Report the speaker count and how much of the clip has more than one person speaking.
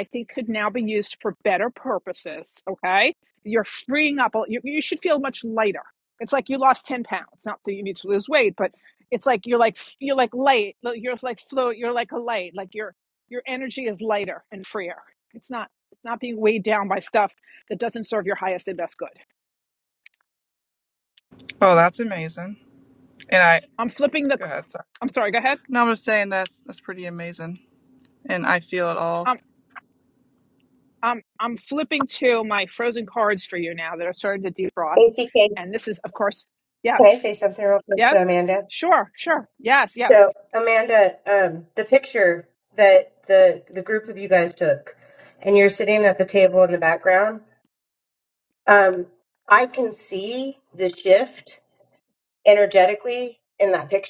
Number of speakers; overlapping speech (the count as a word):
three, about 1%